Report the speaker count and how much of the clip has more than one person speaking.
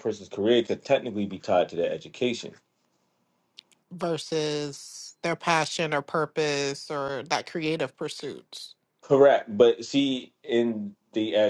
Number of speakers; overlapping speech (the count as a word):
two, no overlap